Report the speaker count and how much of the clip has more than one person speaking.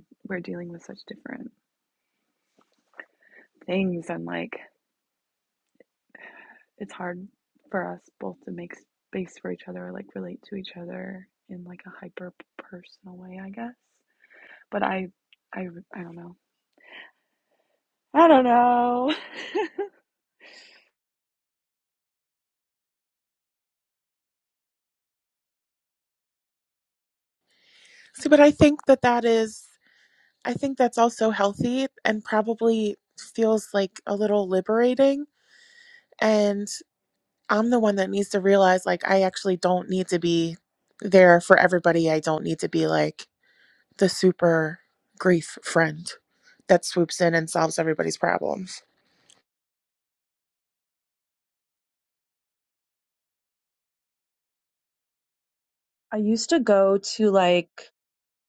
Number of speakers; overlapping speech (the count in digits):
3, no overlap